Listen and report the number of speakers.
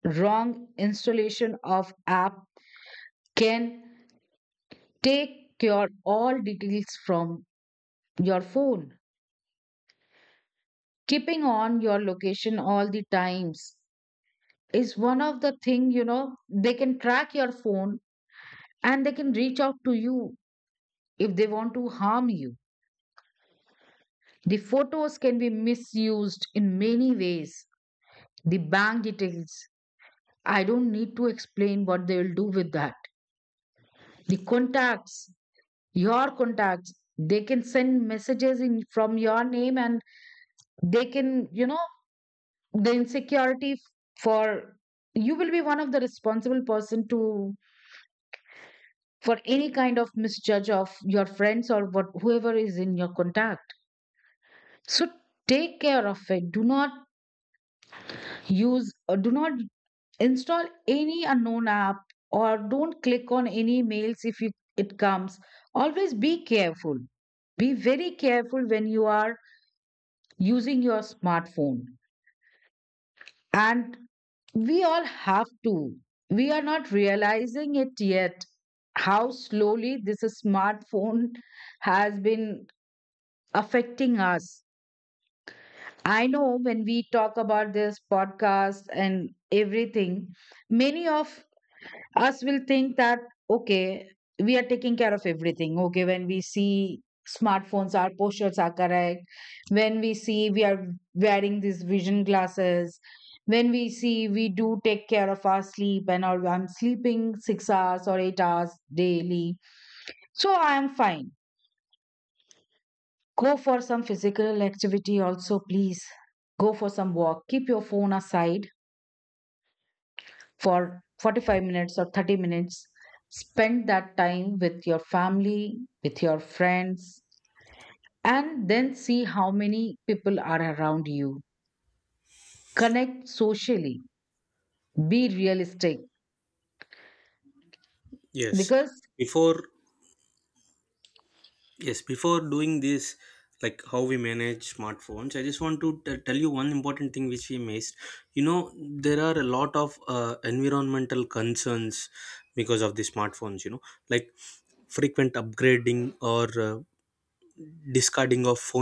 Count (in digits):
2